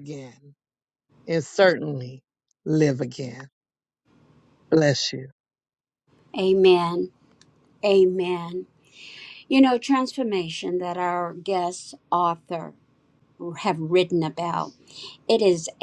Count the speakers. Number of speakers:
2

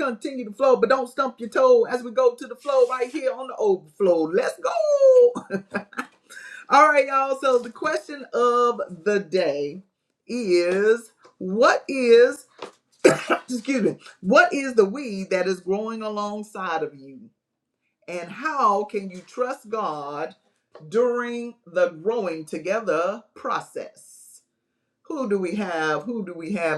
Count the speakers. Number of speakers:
1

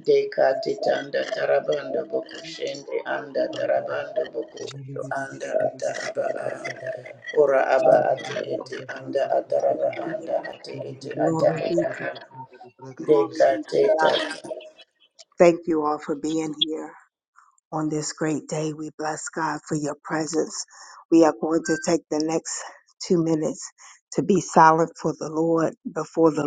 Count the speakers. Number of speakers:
3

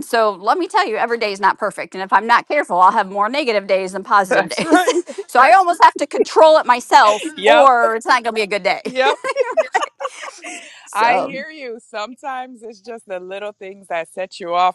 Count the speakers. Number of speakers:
2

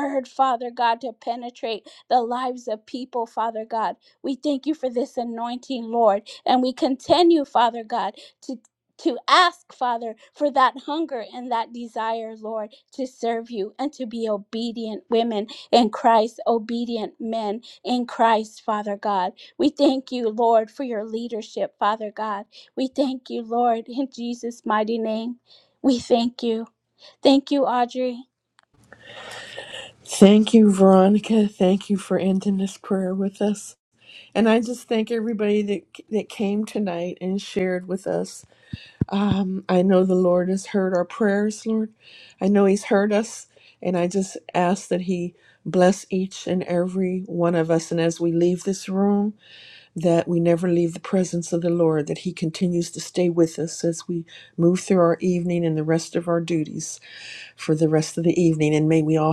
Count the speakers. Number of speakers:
2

